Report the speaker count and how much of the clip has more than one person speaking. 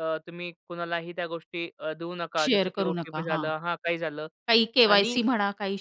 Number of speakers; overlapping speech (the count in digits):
2, about 25%